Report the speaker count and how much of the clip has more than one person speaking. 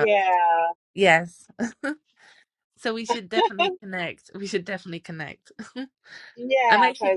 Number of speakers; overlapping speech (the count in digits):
2, about 8%